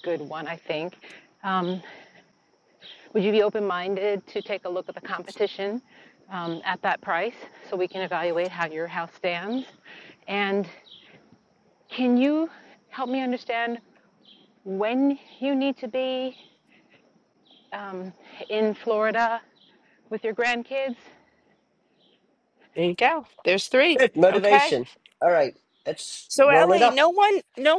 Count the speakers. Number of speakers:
3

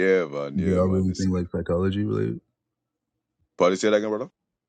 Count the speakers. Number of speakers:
2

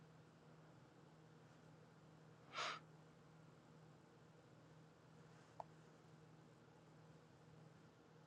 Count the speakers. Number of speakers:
0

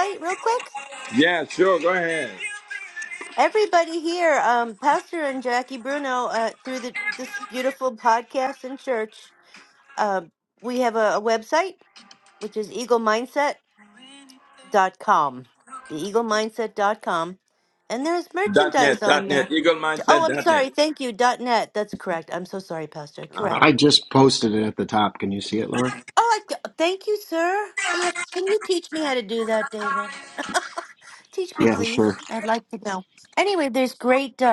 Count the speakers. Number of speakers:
3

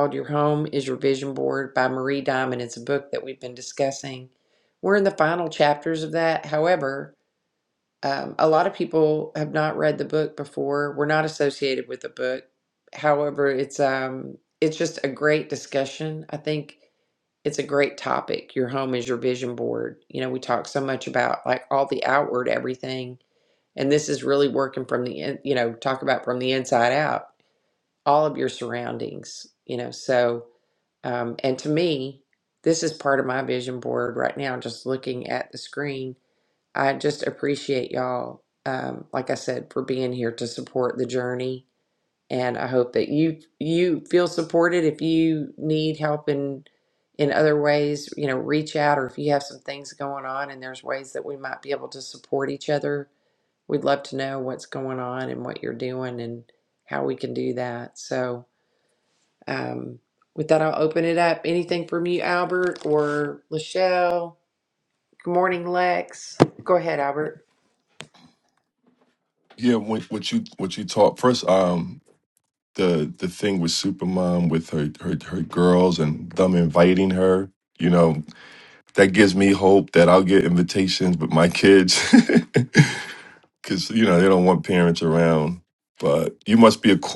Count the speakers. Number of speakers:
2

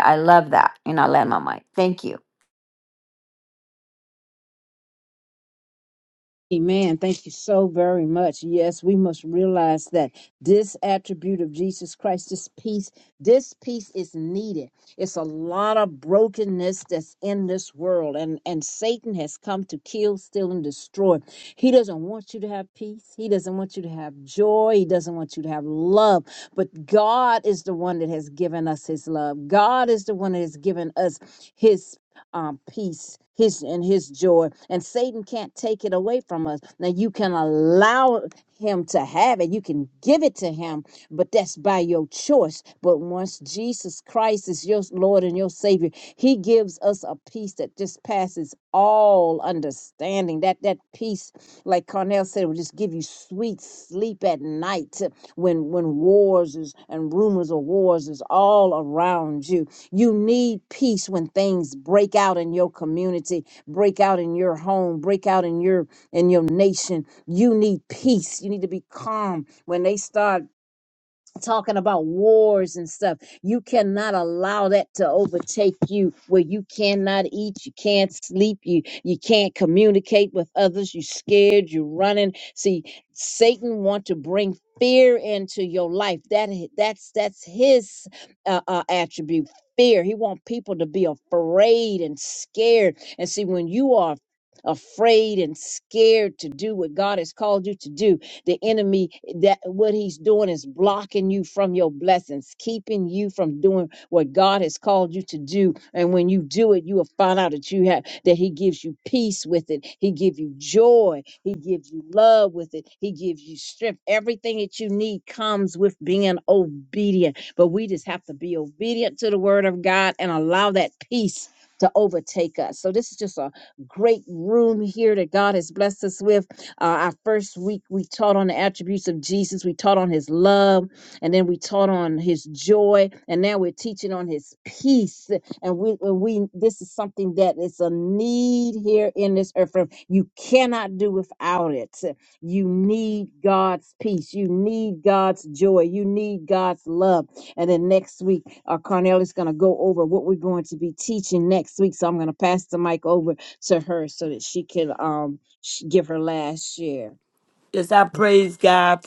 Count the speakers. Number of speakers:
3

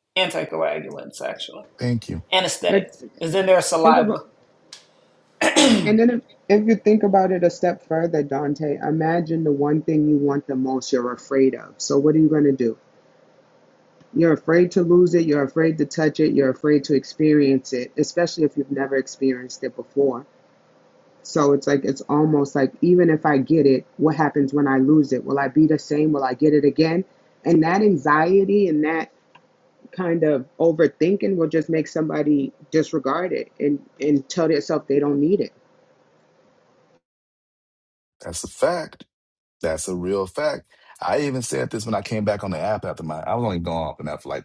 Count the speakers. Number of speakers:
3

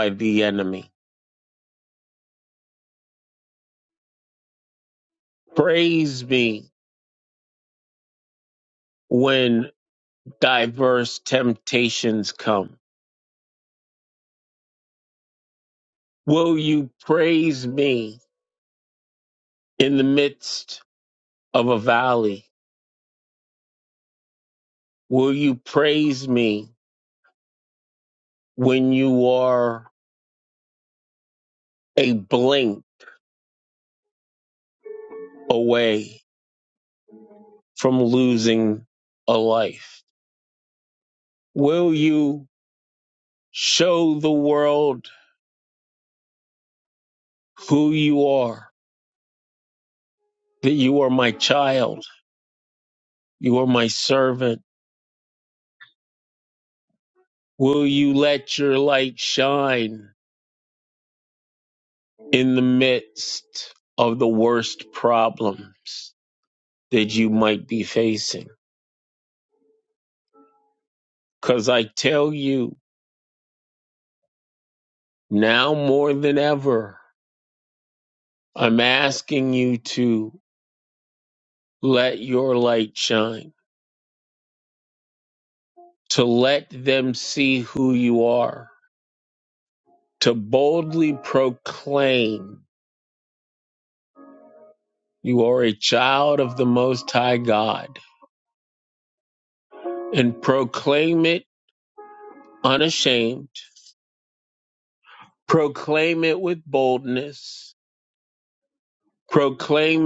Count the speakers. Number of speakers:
1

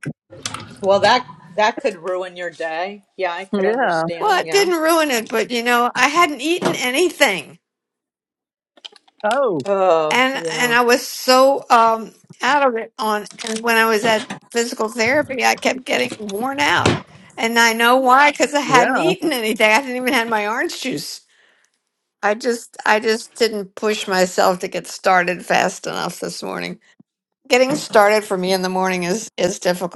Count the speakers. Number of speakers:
3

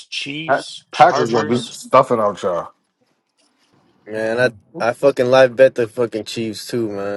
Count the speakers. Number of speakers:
3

